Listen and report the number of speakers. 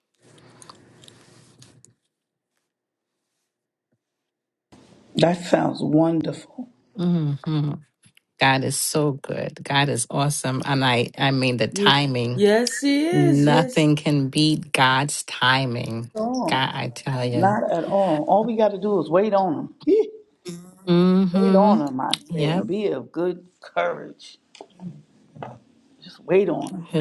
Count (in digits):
3